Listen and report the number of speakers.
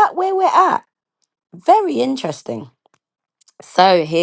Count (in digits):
1